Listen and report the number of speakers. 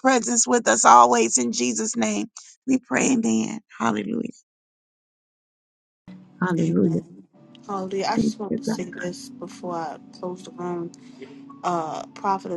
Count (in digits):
2